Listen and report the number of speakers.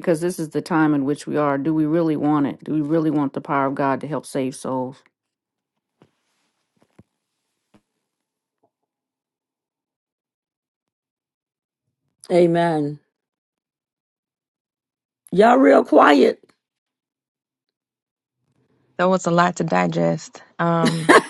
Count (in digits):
3